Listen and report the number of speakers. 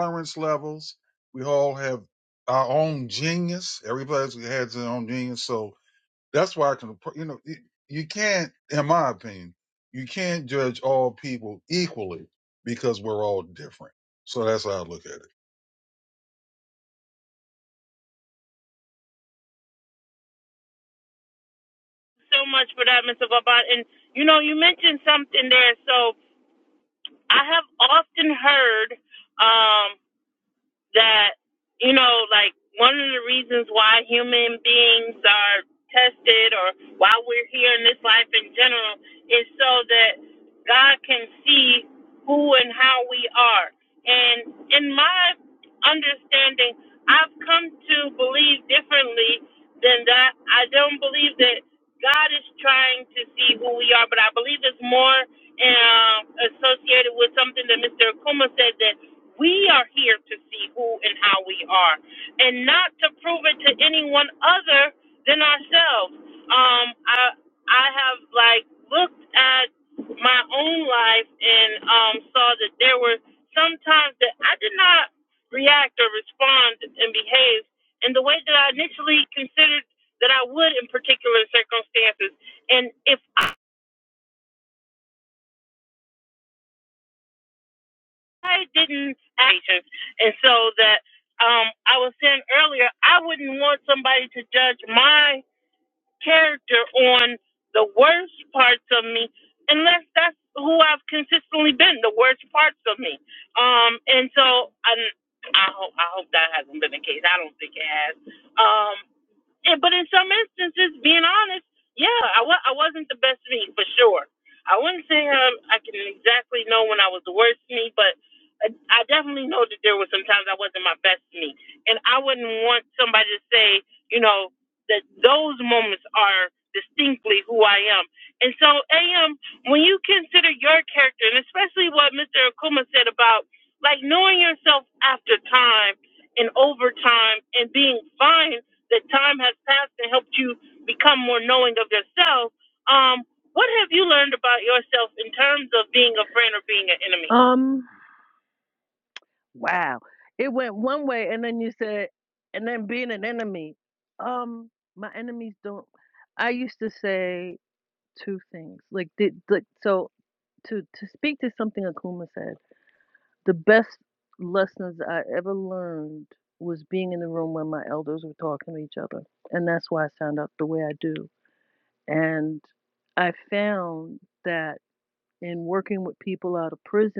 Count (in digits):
3